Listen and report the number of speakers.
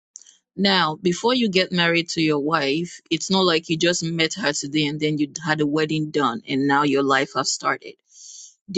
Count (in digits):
1